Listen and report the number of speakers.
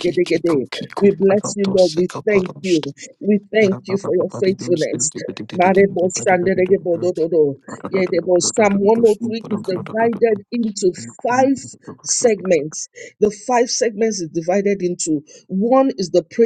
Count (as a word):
two